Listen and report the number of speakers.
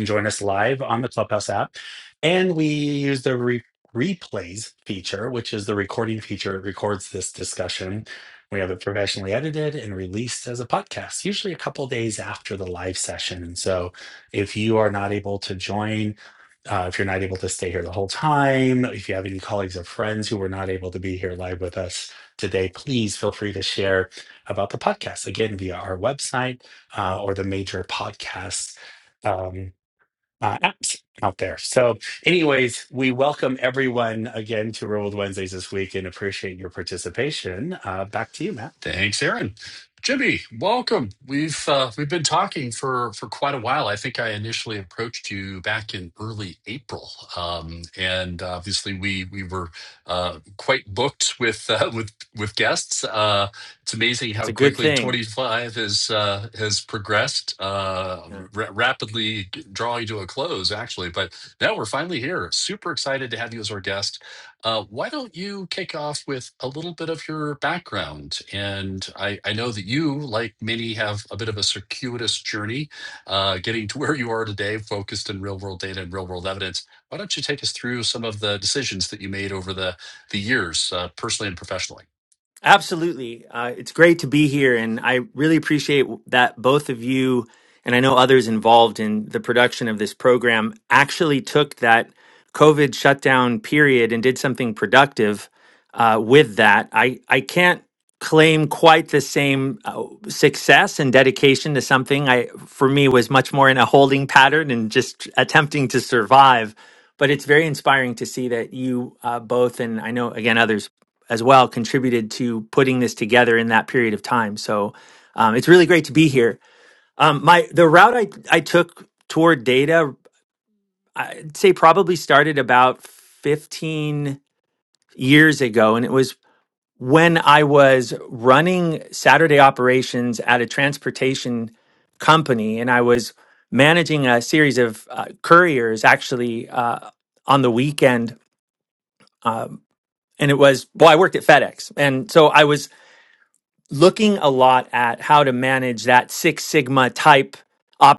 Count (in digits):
3